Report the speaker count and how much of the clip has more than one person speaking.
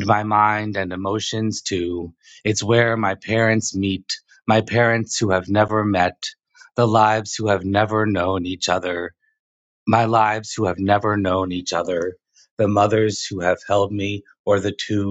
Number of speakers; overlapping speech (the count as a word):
one, no overlap